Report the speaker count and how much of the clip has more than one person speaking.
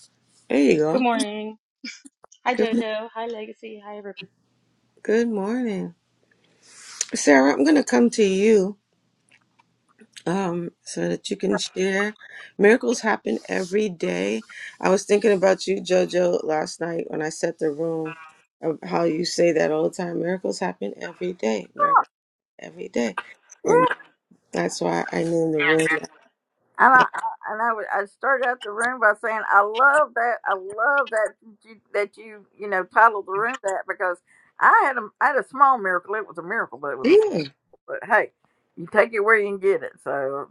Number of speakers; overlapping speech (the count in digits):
3, about 2%